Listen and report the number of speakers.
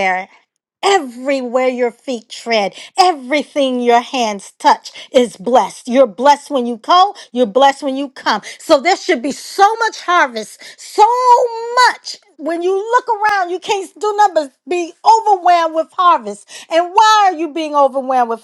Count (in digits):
1